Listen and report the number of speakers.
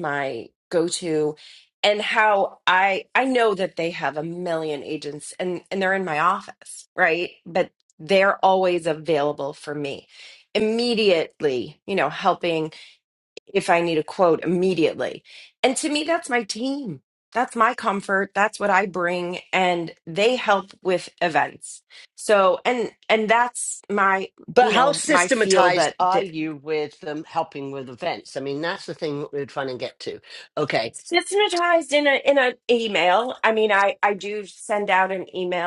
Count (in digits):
2